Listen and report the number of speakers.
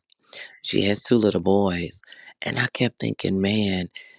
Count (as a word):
one